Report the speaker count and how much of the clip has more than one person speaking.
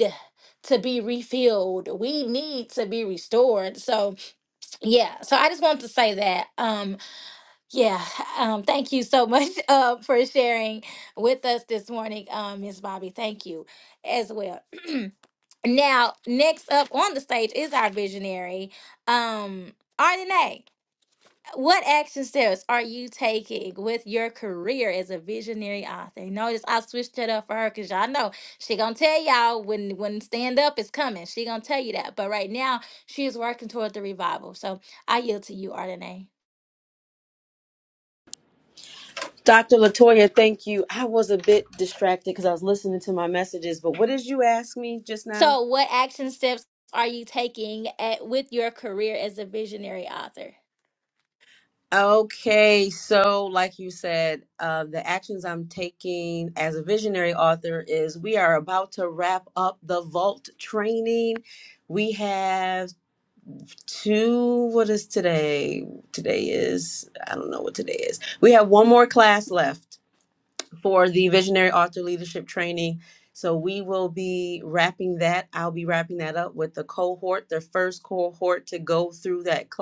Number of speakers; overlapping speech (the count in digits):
2, under 1%